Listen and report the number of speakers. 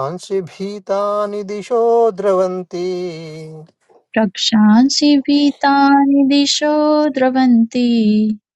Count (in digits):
2